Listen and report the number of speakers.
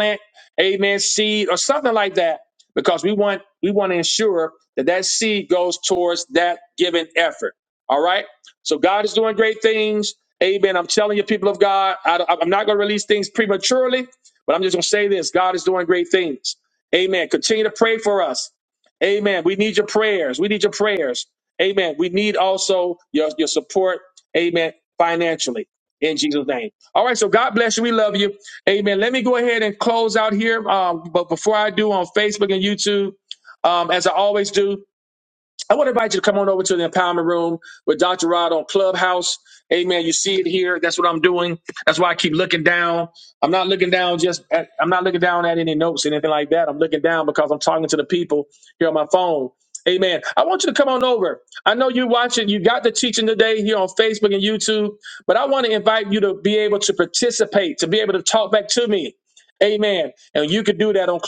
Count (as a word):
one